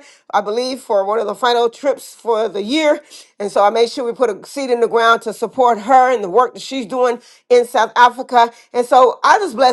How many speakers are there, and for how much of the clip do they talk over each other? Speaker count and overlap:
1, no overlap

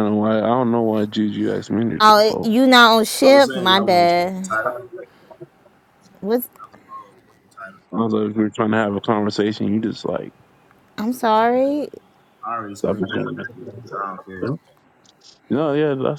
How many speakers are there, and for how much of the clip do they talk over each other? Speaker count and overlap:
3, about 14%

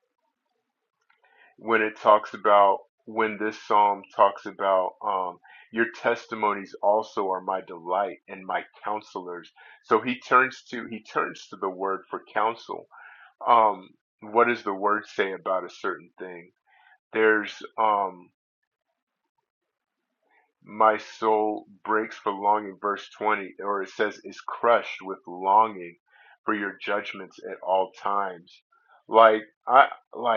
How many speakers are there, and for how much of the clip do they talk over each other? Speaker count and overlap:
1, no overlap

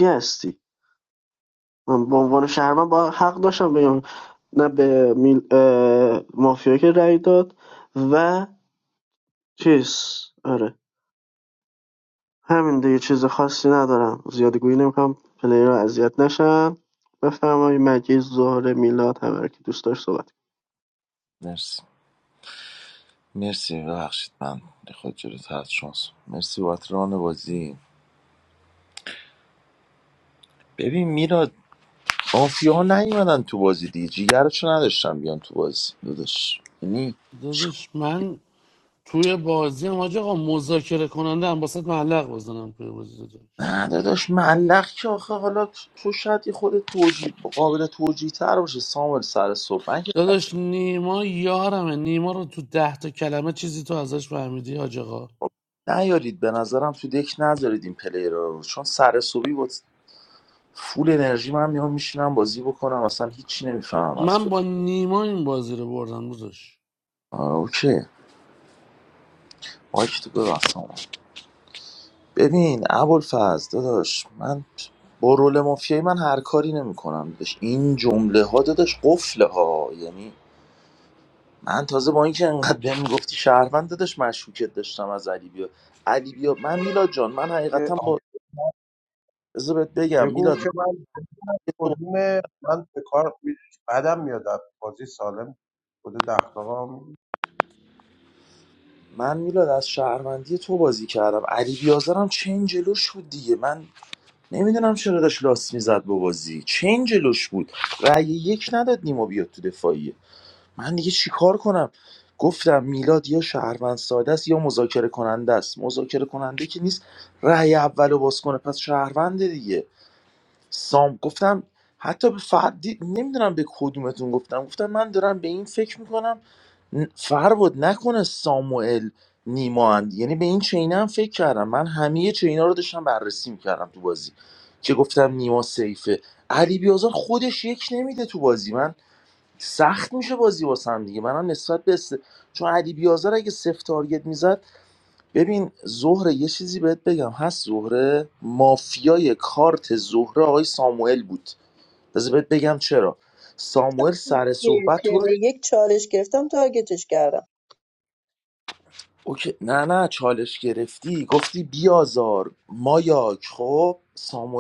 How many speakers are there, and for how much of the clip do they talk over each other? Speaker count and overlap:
5, about 1%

